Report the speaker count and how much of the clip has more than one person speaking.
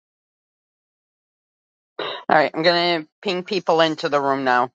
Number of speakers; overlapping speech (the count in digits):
1, no overlap